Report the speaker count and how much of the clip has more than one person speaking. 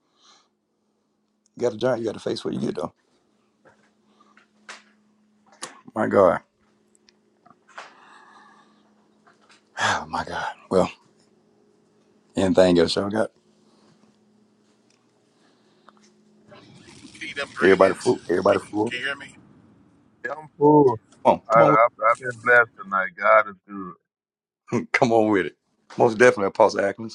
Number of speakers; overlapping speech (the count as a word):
three, about 6%